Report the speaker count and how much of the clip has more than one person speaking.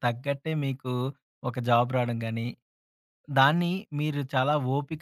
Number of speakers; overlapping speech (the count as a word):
one, no overlap